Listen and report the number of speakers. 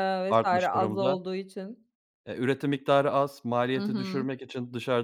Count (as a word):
two